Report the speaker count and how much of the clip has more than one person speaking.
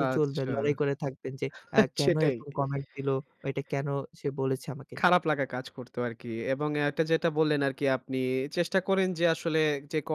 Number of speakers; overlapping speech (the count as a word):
two, about 11%